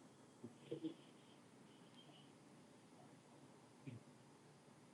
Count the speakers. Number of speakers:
0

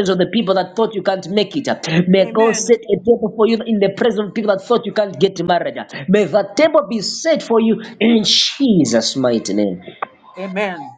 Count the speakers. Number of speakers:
2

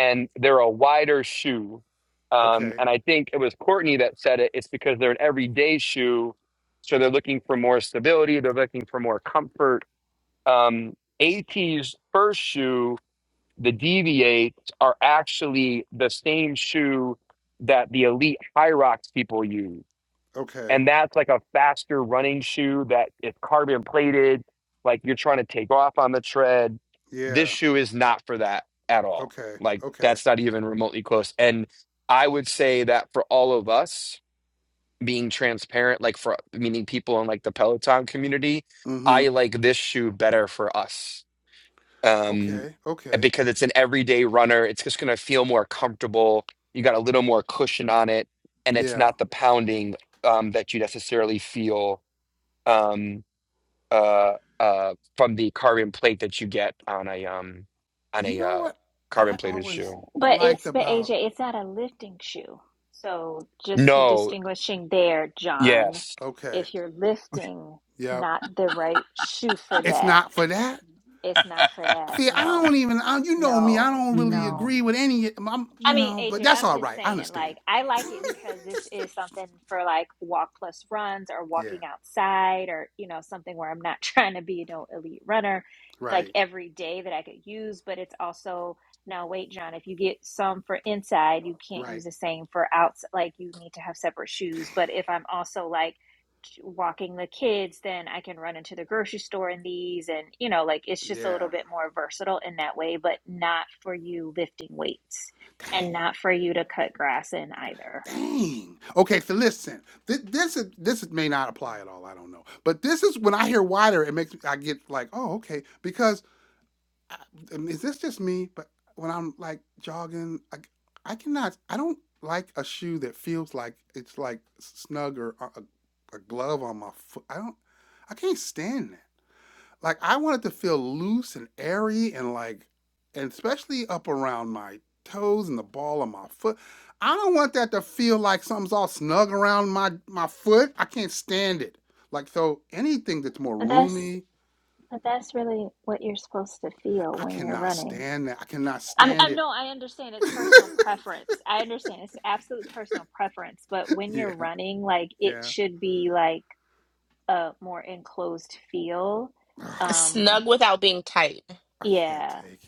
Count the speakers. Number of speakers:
4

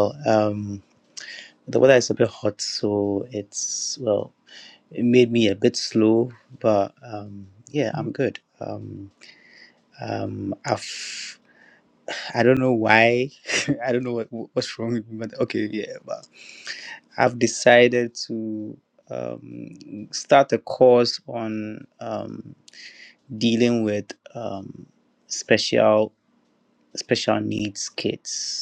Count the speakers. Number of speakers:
1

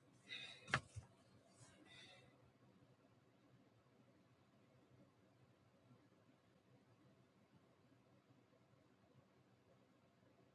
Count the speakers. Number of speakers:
0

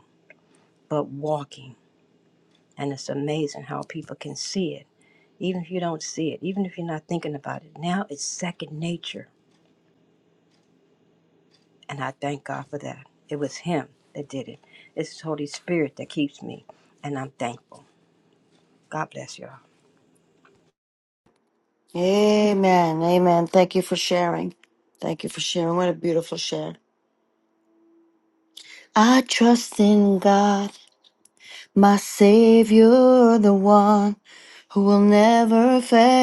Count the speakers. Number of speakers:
2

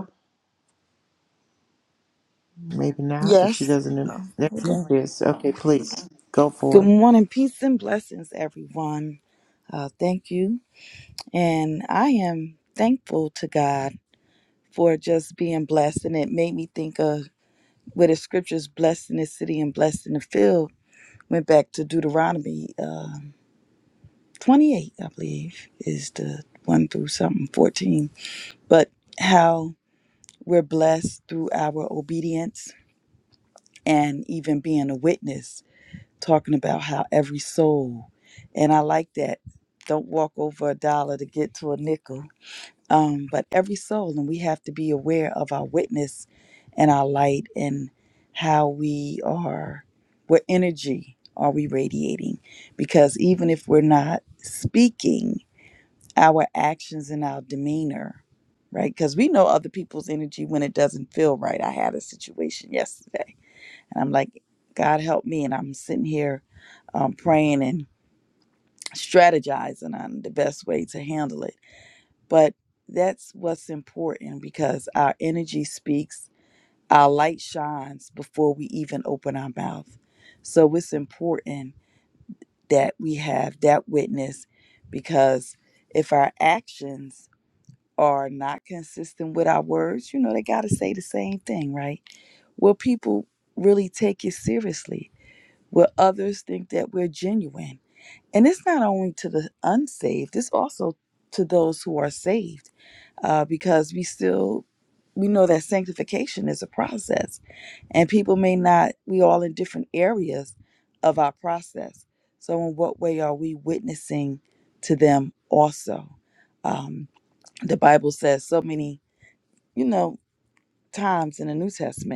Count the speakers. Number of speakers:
2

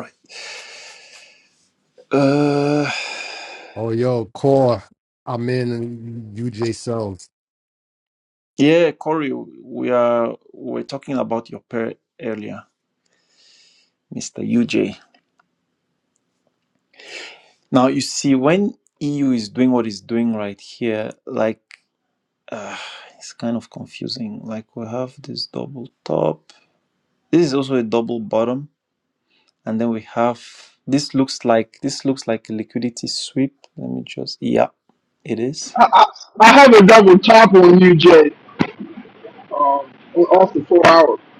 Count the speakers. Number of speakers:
3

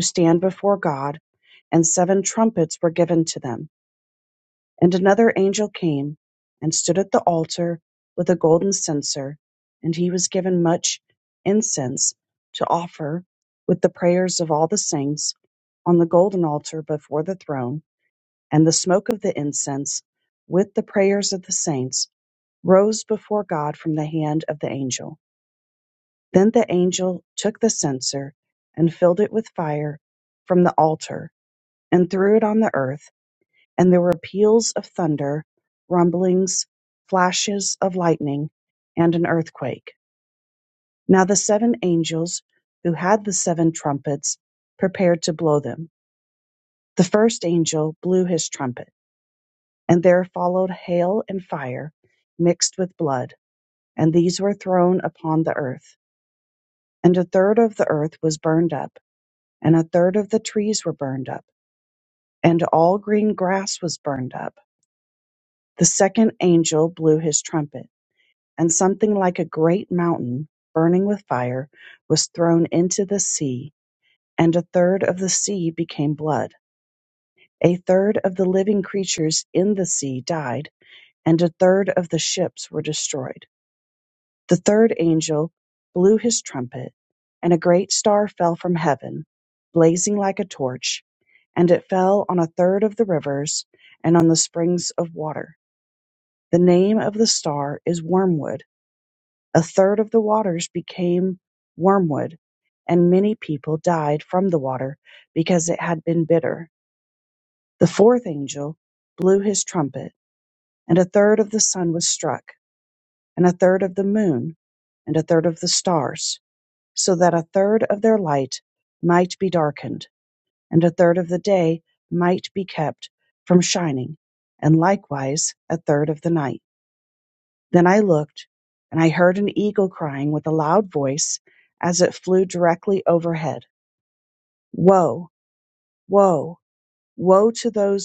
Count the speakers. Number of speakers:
1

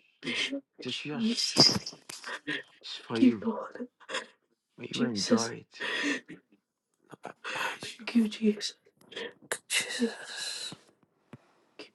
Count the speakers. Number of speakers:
3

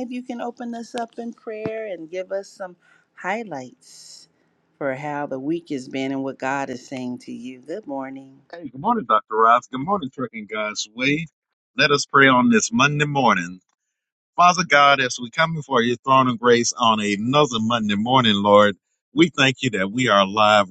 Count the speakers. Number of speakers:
2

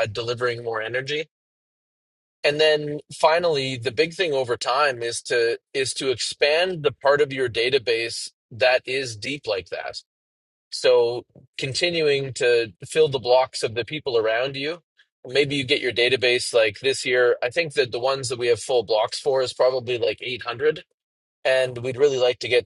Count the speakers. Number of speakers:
1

